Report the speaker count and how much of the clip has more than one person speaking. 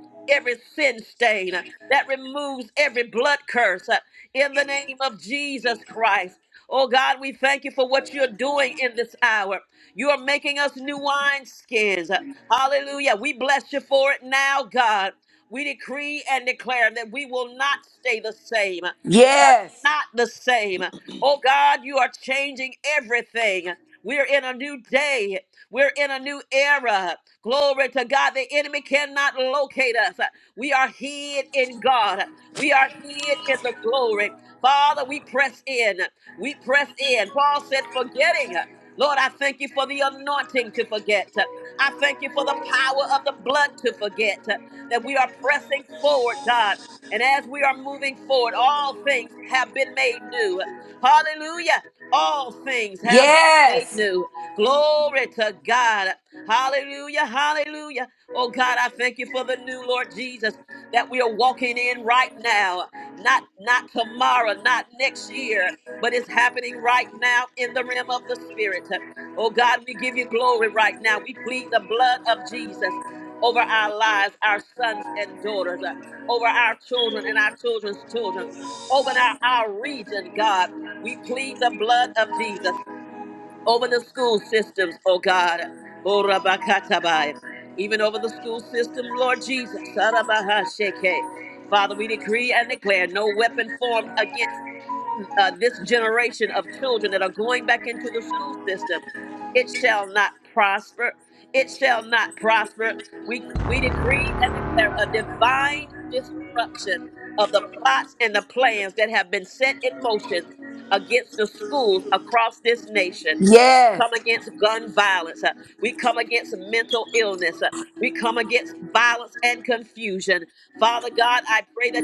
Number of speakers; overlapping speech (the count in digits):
2, about 1%